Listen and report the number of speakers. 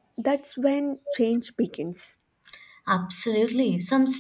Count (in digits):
2